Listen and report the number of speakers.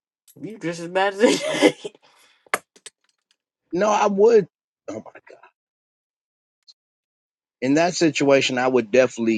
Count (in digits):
2